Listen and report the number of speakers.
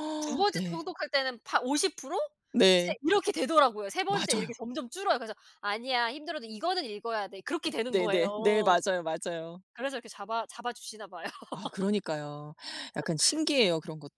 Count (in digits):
2